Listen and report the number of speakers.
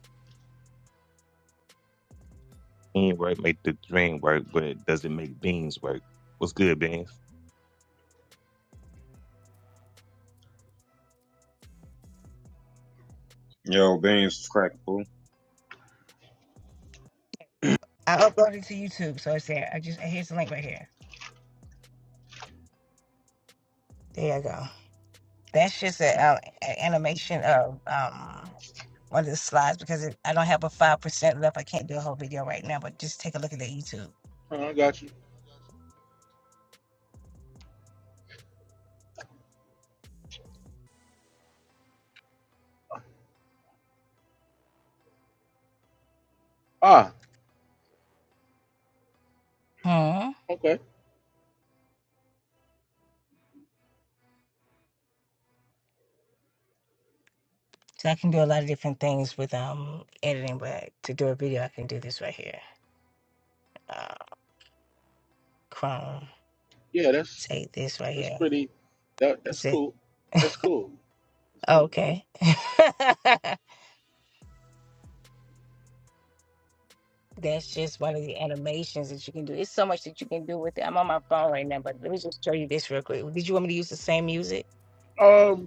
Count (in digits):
4